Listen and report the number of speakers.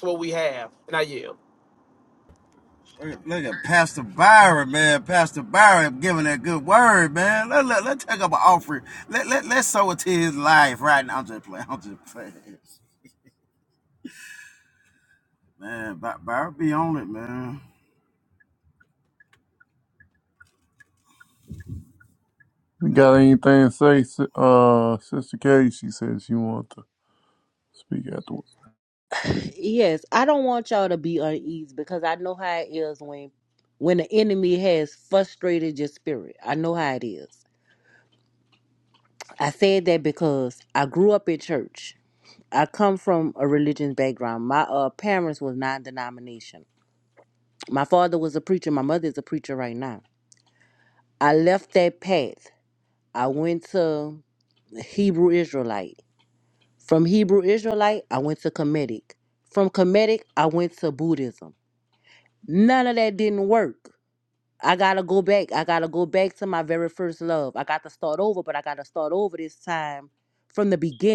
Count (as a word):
four